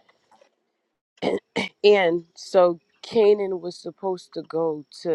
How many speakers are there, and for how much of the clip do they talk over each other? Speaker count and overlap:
one, no overlap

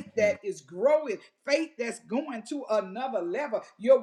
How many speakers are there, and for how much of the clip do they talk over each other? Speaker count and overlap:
one, no overlap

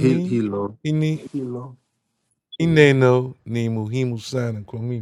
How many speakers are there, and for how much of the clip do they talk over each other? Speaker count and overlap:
two, about 8%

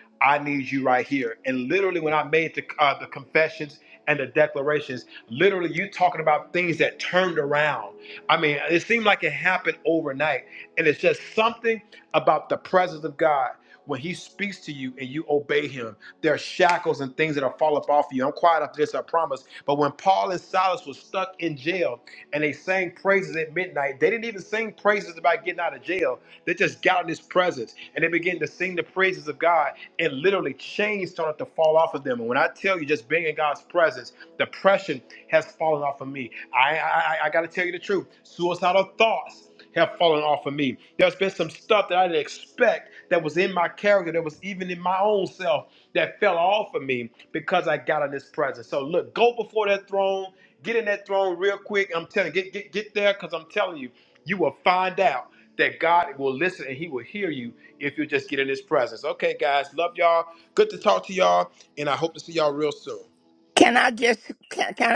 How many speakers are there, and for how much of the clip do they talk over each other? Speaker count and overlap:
two, no overlap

